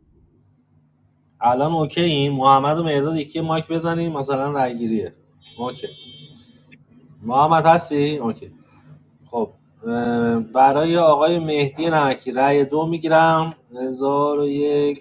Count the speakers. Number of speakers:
1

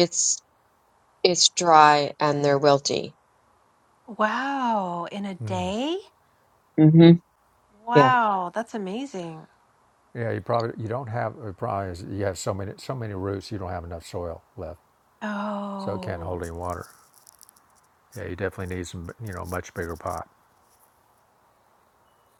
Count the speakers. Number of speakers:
3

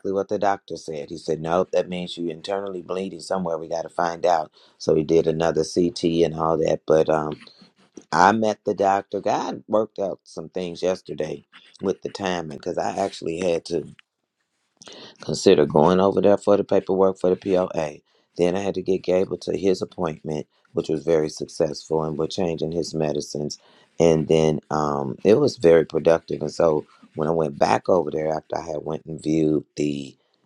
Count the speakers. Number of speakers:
1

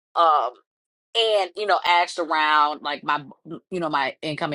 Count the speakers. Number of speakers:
1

